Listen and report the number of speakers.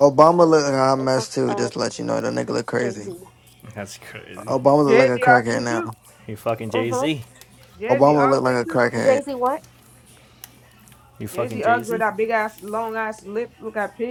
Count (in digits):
4